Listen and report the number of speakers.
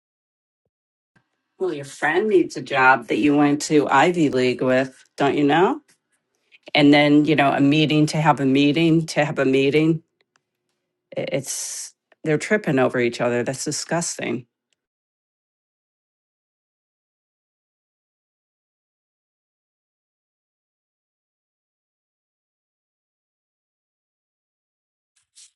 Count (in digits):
1